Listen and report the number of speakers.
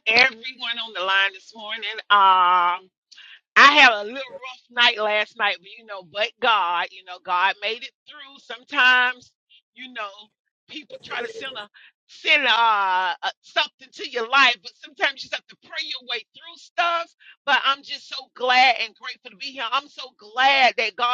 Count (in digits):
1